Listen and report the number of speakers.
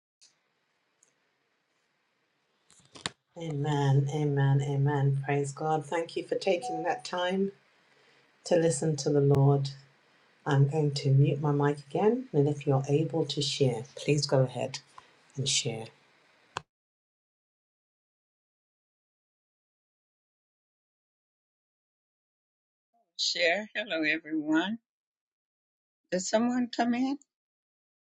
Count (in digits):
2